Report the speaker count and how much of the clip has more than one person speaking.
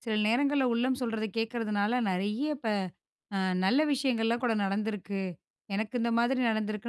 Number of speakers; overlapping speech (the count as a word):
one, no overlap